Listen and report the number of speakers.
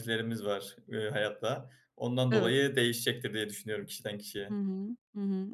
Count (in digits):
2